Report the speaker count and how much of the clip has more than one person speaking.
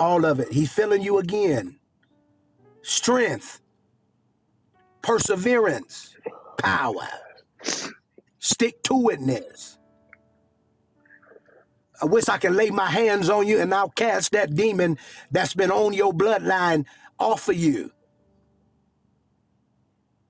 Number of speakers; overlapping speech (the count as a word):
one, no overlap